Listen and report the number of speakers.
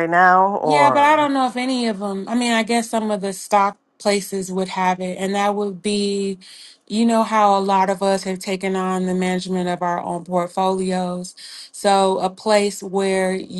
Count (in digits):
2